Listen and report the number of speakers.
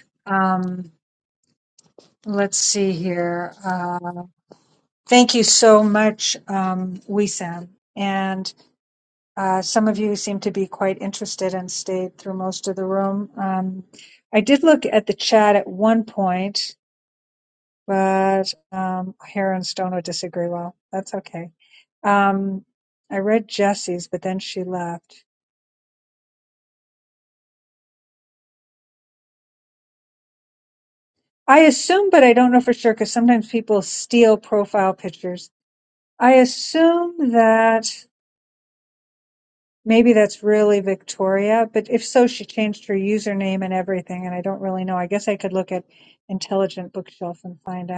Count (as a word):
one